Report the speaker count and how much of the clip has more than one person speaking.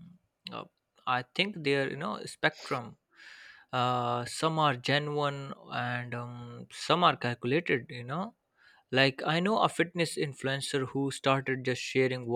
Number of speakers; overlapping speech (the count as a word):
one, no overlap